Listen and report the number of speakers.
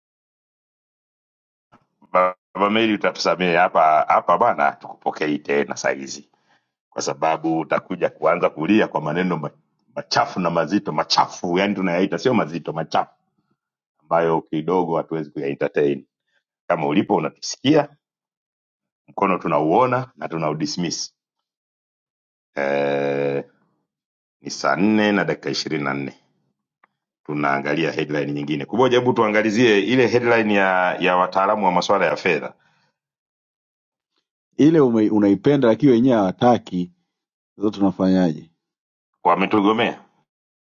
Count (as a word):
two